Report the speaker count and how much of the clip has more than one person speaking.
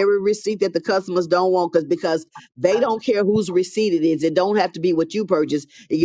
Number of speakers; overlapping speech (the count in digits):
1, no overlap